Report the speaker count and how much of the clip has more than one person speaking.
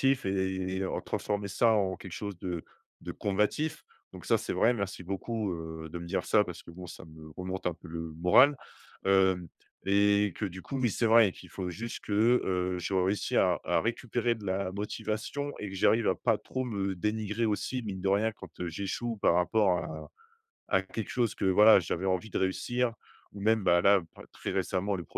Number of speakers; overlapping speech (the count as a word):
one, no overlap